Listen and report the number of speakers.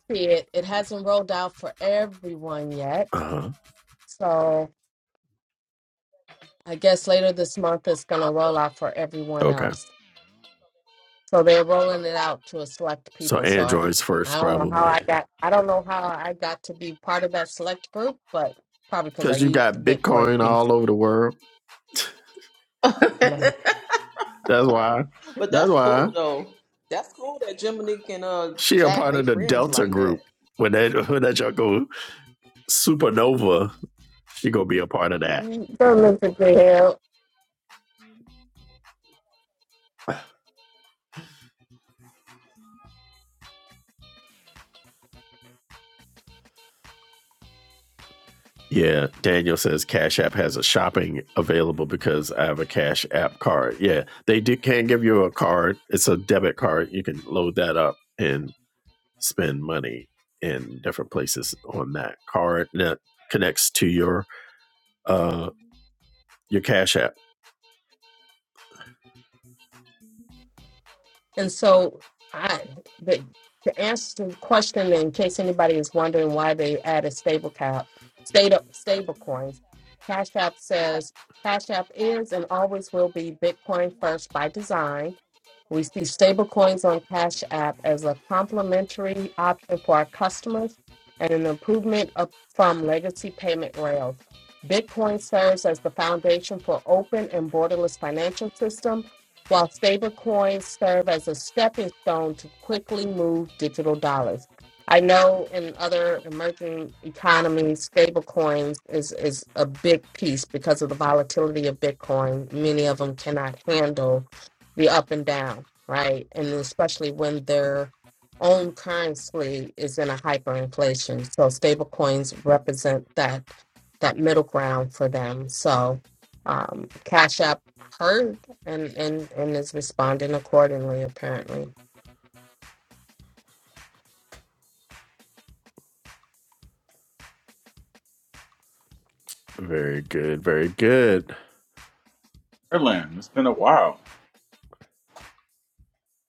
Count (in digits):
4